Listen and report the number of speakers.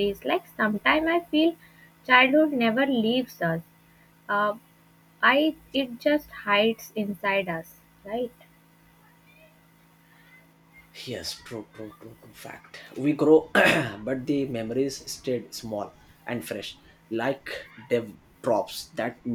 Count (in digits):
2